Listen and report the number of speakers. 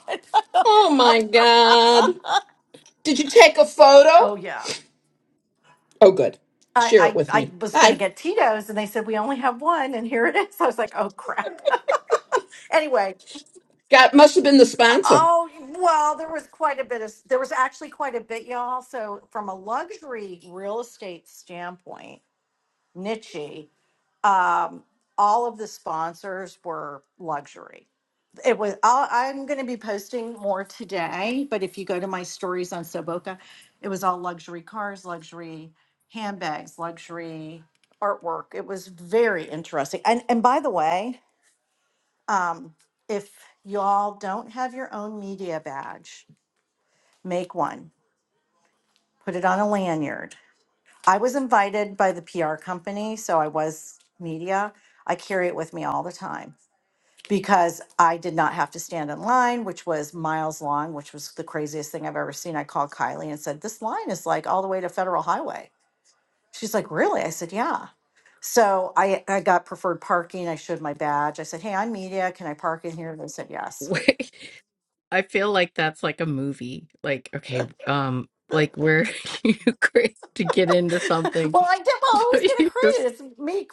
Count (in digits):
3